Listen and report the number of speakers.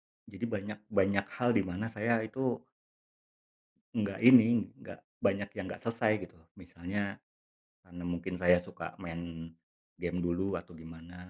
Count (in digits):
1